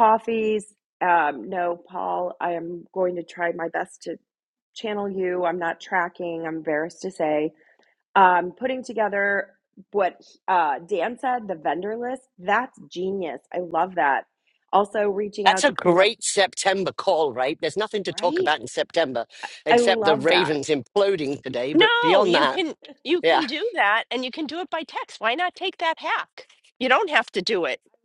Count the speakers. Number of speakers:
3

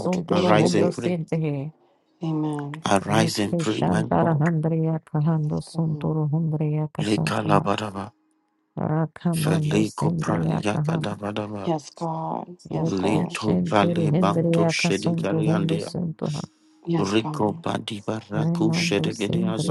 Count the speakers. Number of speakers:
3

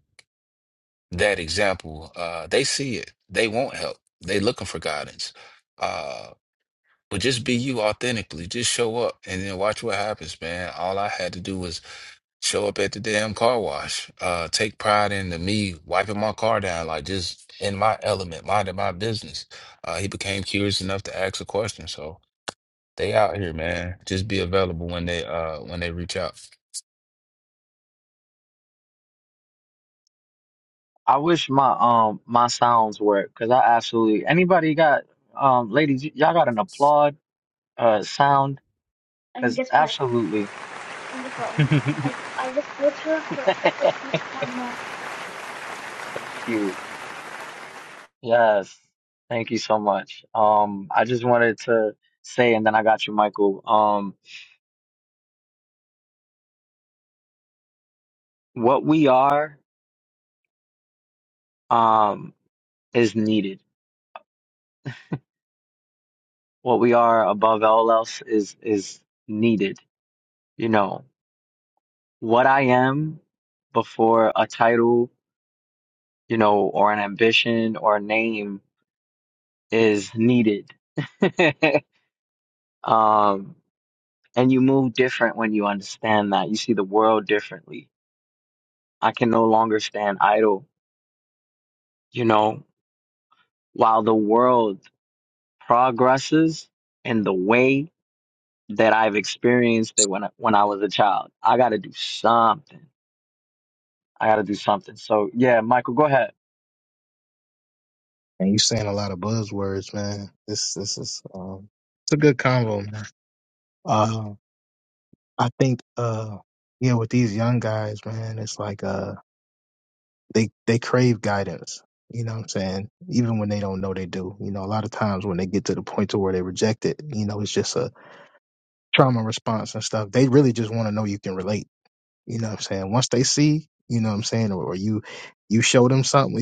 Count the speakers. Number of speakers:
4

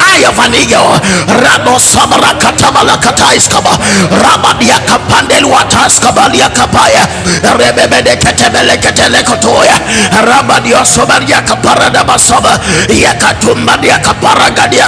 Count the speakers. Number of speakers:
1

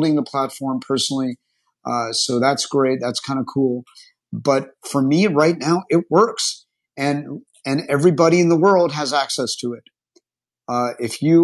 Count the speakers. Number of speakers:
1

